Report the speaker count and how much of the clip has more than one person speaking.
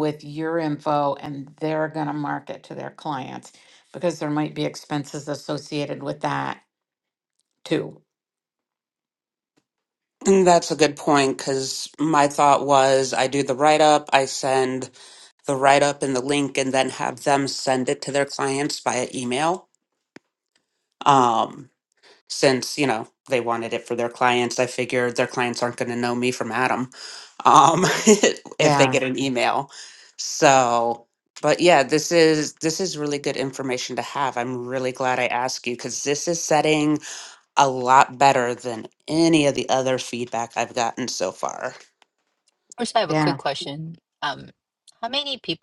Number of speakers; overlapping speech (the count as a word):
three, about 2%